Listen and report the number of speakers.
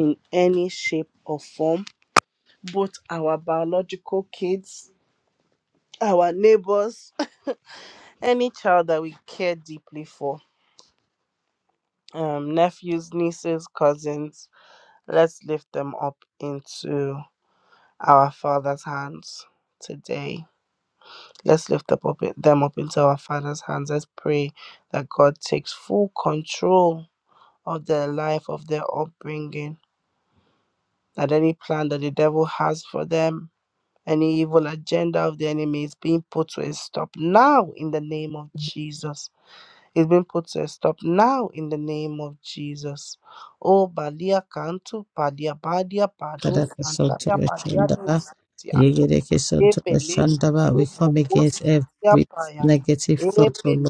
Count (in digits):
2